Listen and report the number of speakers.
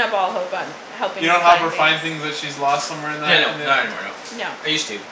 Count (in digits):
3